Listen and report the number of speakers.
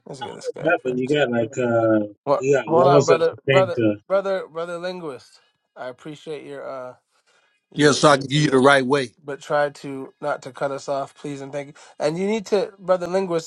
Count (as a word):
three